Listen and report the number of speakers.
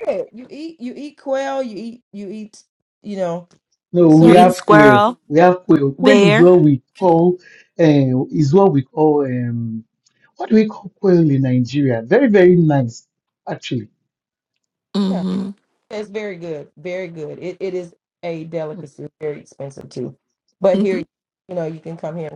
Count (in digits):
3